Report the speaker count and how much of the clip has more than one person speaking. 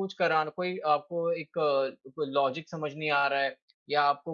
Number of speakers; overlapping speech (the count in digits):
1, no overlap